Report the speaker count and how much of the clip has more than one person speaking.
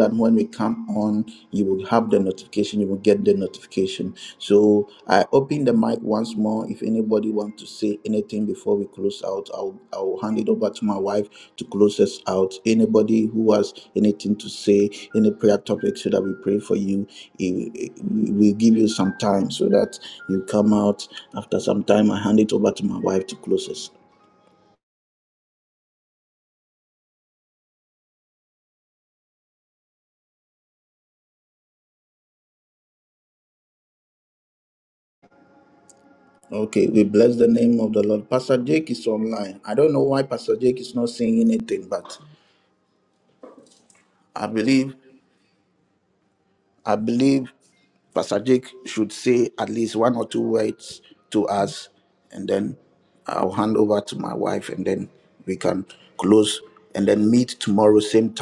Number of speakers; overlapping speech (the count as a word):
one, no overlap